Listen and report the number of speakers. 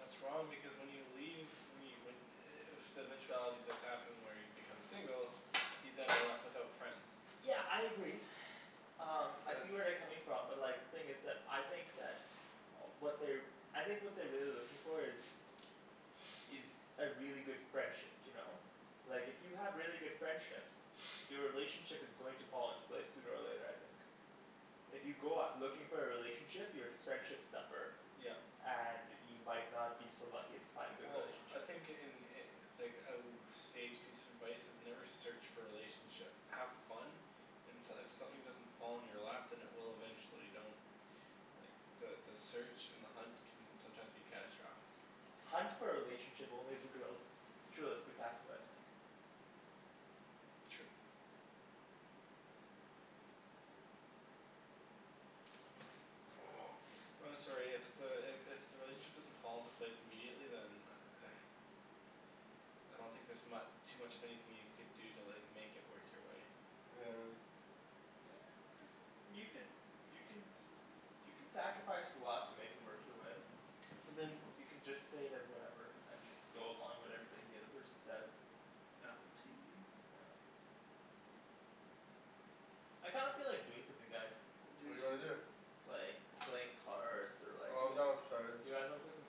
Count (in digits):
3